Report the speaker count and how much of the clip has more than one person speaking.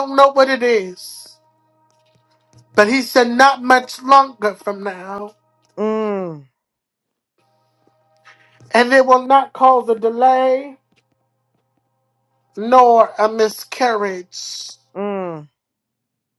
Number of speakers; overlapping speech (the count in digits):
2, no overlap